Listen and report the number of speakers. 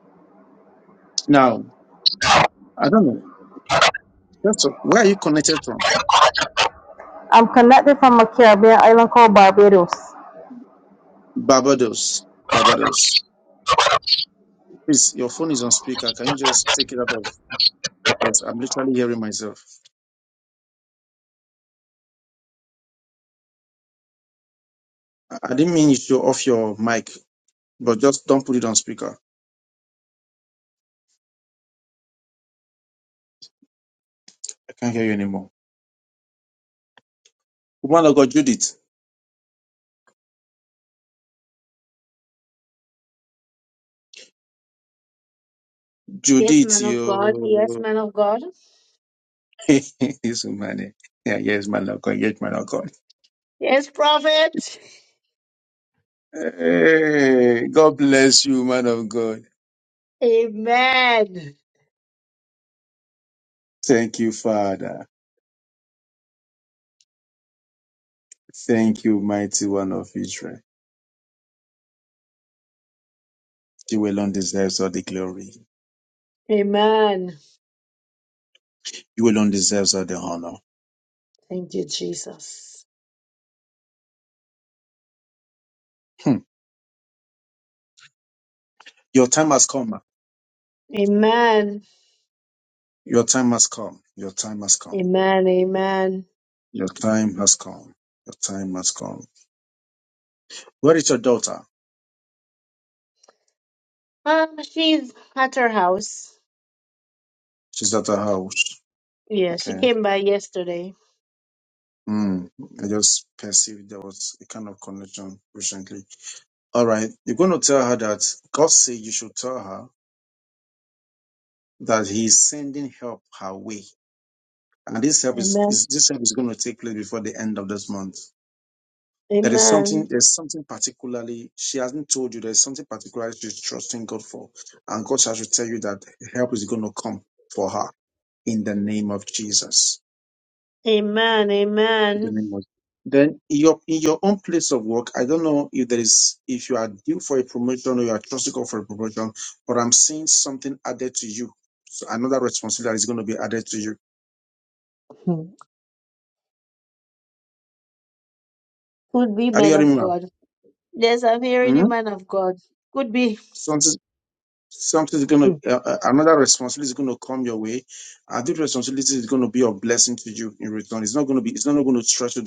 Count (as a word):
three